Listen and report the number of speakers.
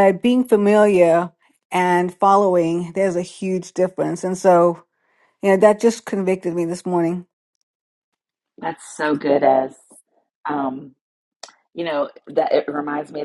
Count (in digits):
2